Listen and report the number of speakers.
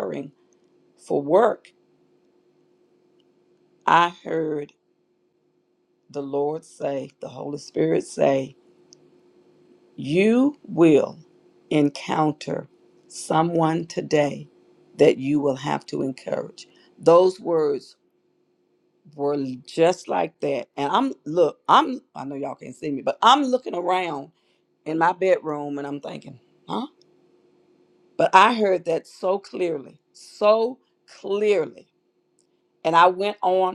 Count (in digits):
1